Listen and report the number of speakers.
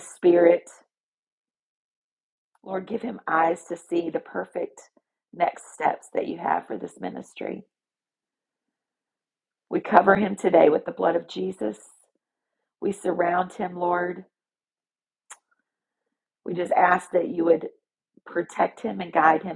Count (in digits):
1